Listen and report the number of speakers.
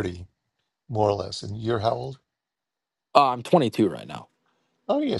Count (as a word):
two